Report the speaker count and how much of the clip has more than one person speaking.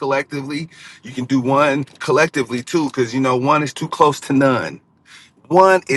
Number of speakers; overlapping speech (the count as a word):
one, no overlap